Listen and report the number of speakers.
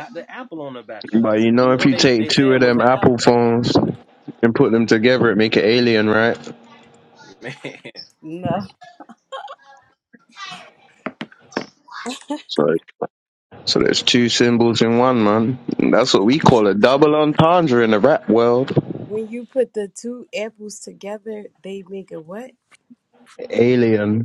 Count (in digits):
3